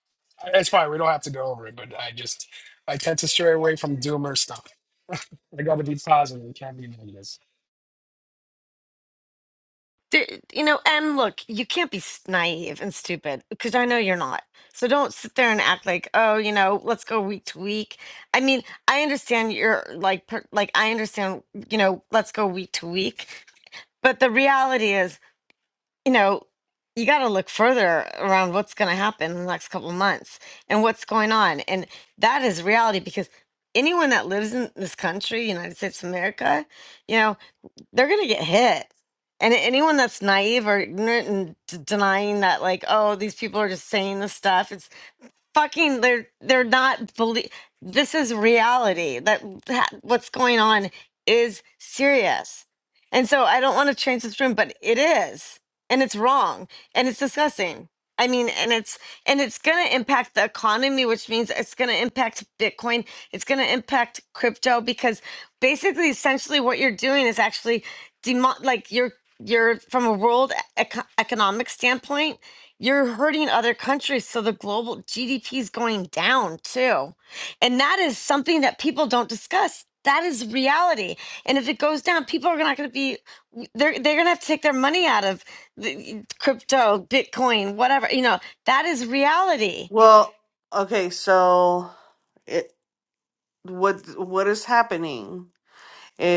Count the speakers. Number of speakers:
three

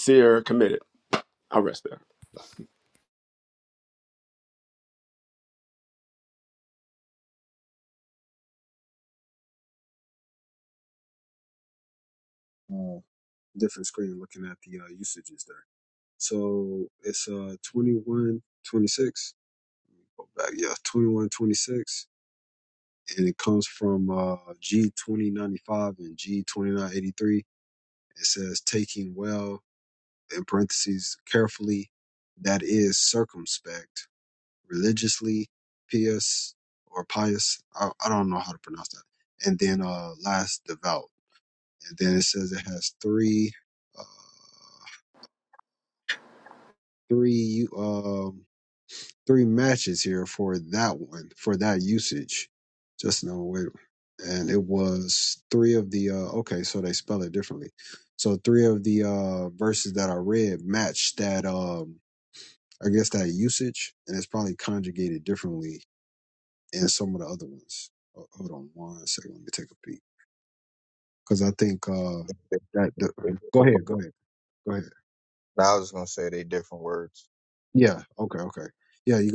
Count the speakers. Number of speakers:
three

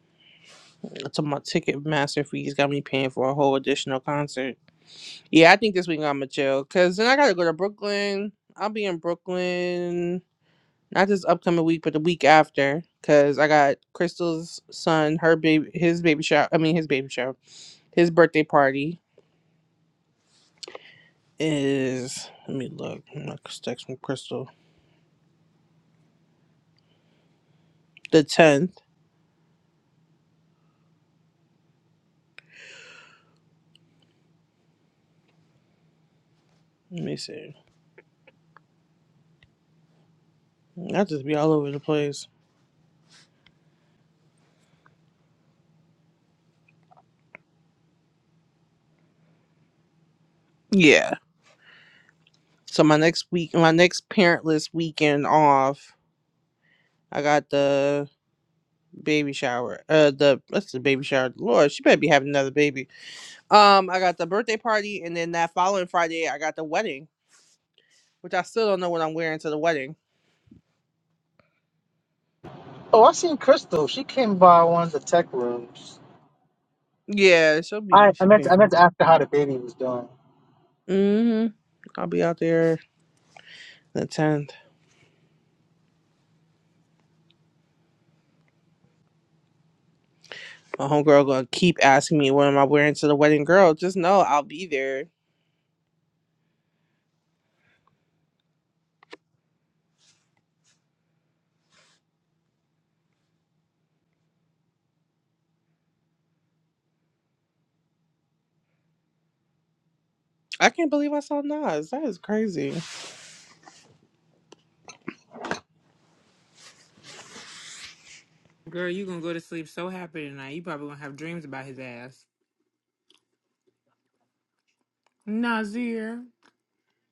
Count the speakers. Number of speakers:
three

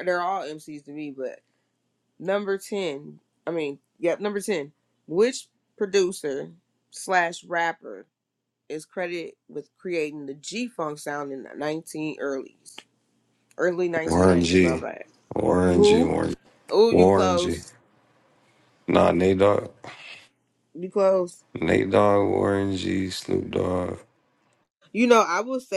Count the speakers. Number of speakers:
two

